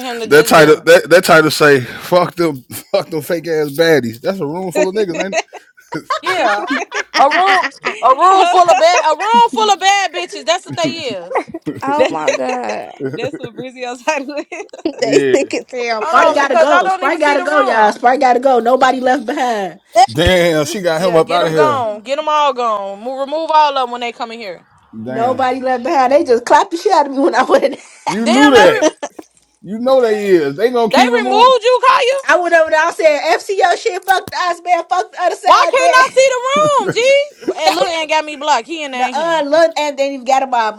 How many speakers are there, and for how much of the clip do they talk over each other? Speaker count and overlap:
five, about 17%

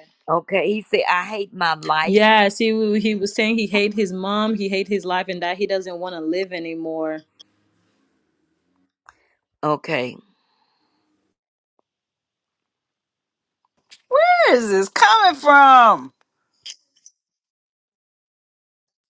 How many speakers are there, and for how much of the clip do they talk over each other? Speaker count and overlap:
three, about 1%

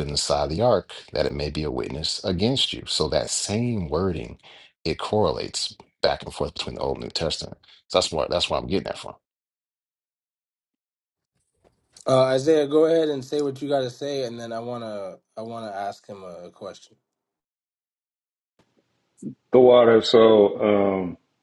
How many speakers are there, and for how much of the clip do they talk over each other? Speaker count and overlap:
three, no overlap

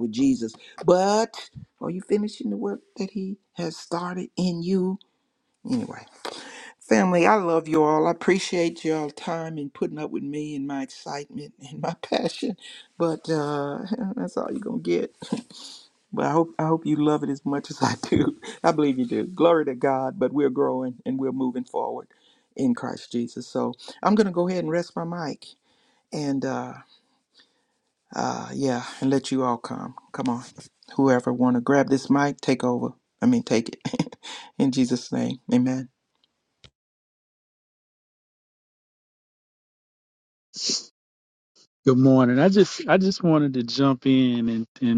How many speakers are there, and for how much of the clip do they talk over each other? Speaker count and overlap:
two, no overlap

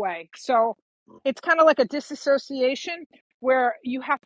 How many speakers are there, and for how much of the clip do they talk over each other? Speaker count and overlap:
one, no overlap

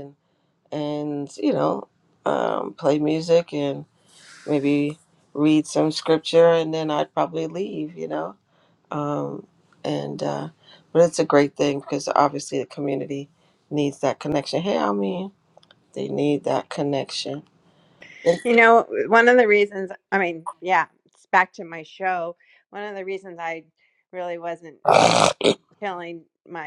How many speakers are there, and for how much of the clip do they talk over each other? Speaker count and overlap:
two, no overlap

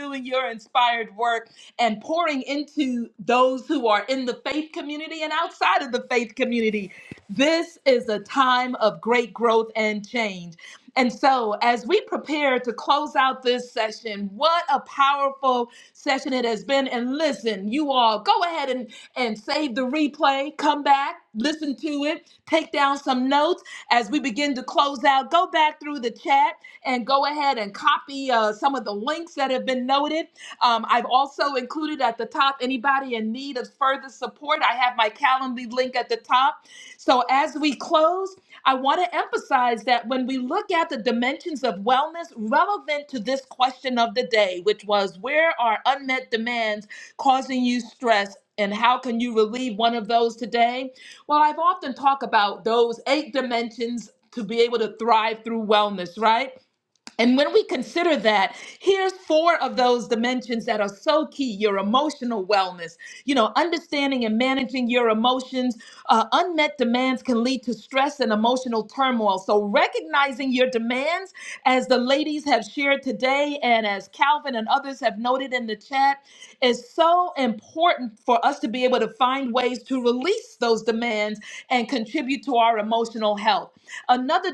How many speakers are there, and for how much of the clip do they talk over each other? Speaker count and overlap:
one, no overlap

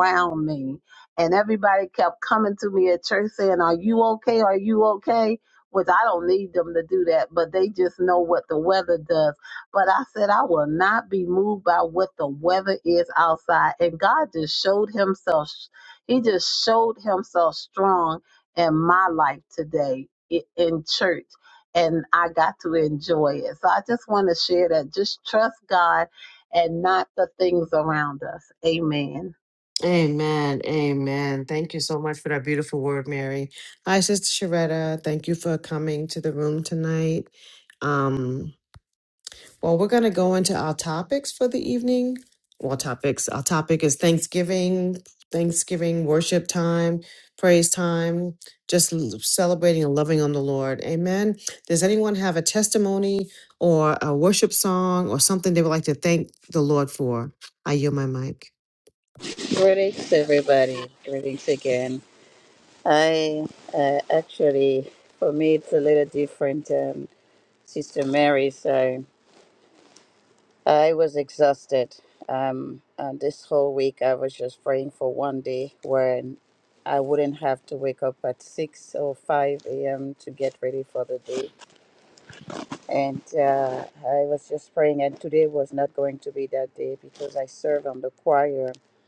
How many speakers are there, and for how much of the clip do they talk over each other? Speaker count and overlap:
three, no overlap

